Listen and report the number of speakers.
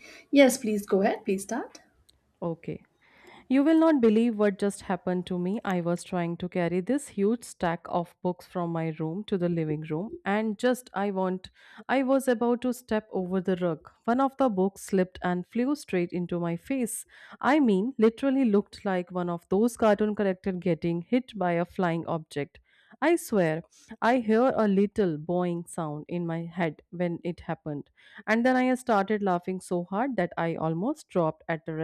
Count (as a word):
two